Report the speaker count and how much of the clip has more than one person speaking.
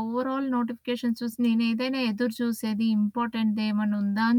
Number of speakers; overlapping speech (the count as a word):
one, no overlap